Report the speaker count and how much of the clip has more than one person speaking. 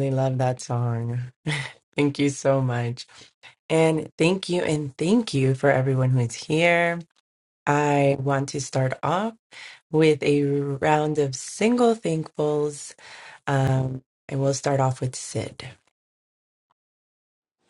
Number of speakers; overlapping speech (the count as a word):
one, no overlap